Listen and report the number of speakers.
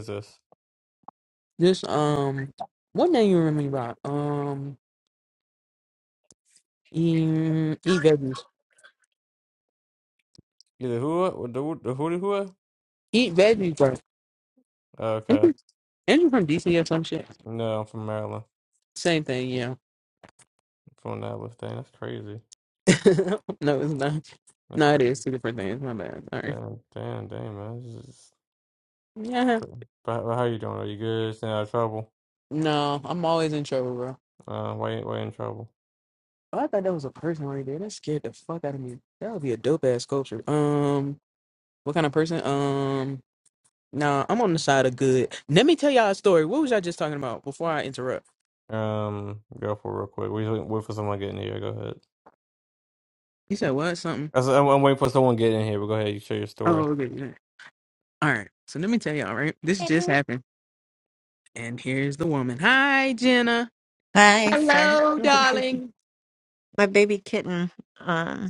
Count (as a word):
three